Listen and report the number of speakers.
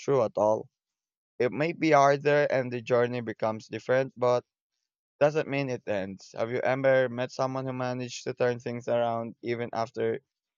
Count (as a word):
one